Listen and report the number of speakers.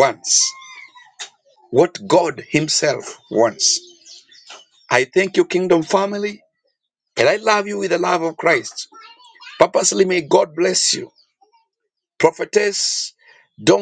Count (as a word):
one